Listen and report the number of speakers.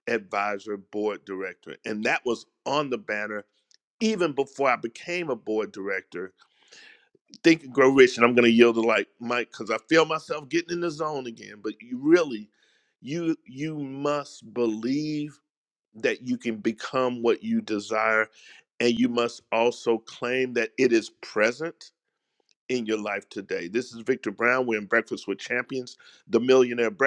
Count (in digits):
1